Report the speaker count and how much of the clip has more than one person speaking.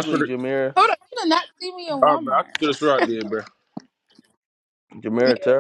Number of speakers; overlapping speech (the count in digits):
3, about 17%